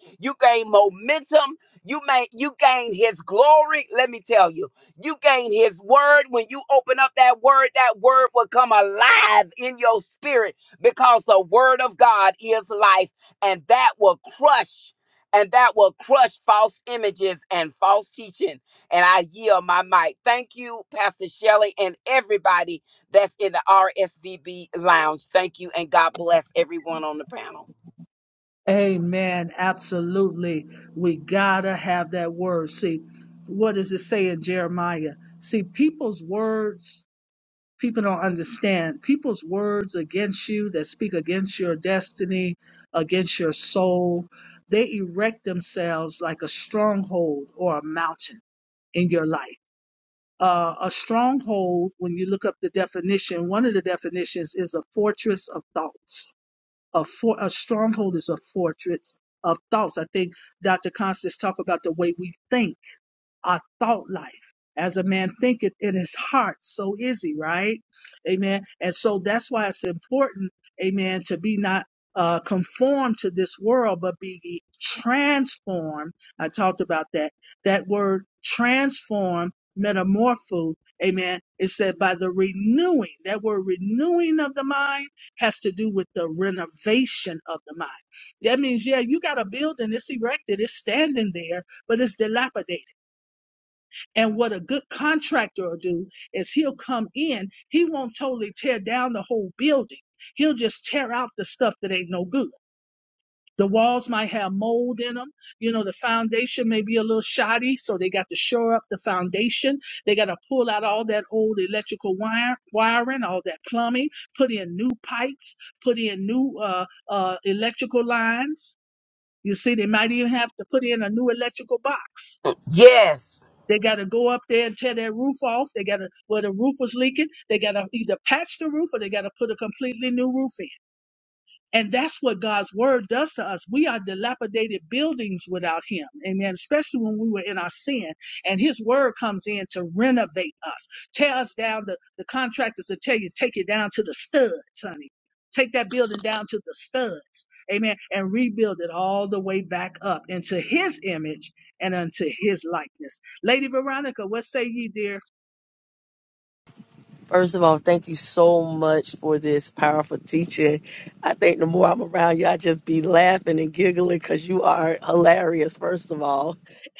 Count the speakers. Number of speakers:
three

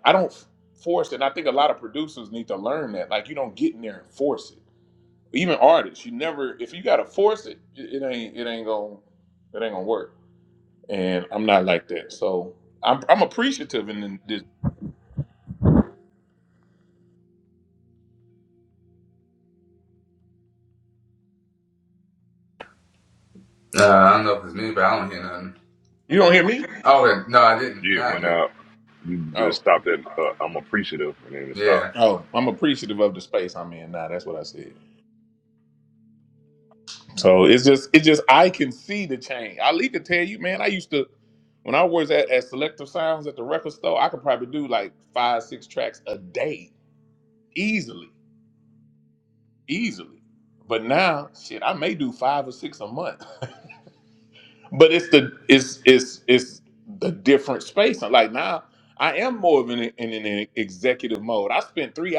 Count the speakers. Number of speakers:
three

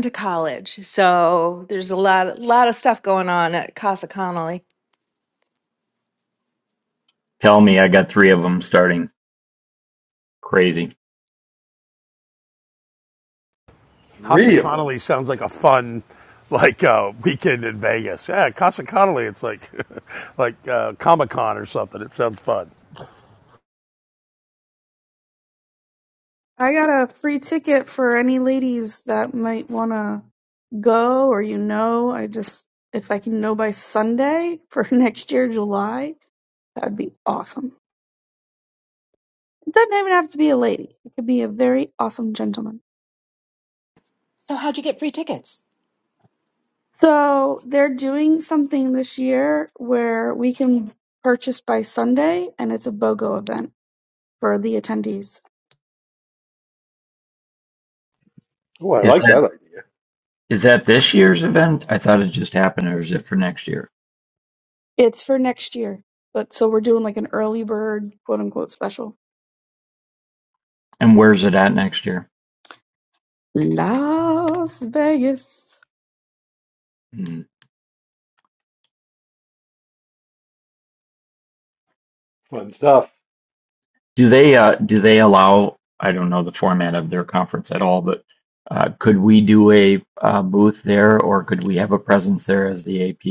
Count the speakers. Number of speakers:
five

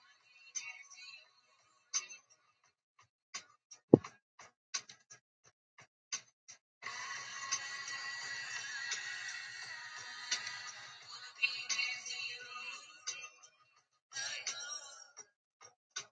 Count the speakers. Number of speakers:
zero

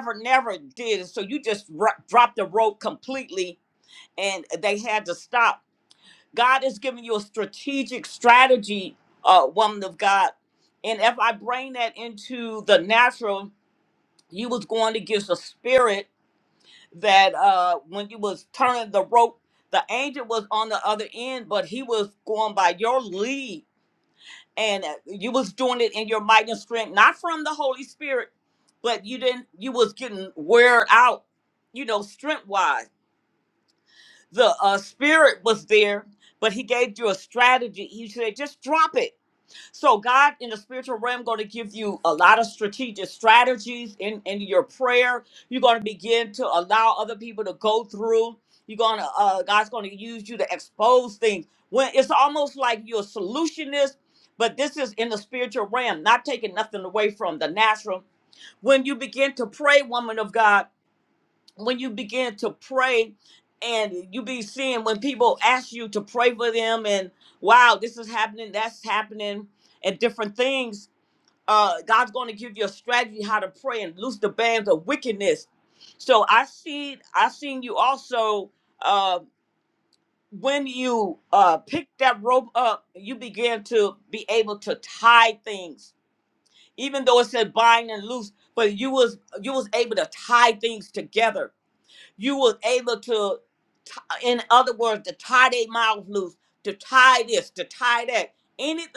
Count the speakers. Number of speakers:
one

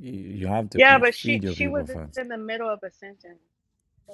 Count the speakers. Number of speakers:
two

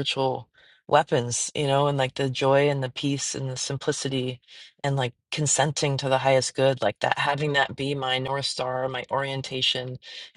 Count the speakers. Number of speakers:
one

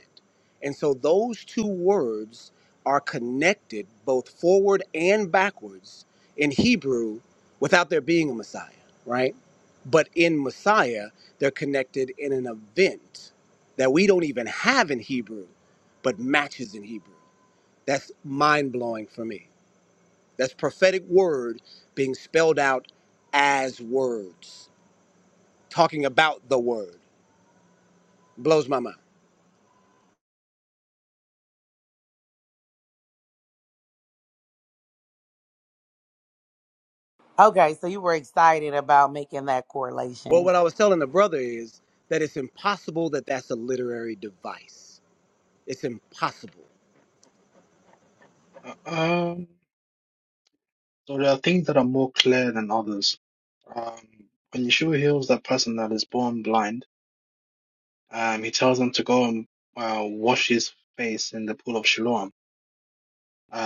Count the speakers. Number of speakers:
three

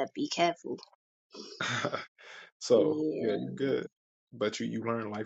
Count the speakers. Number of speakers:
two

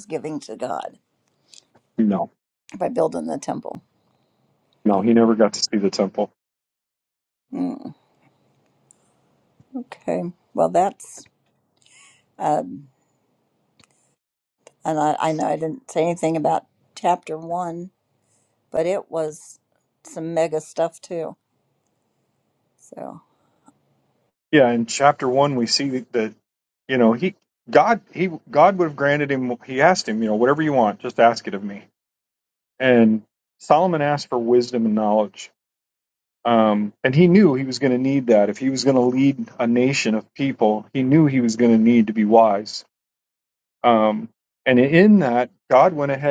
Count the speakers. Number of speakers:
two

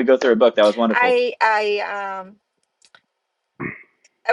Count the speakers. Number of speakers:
two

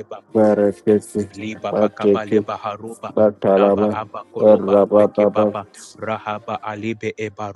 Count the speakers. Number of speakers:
two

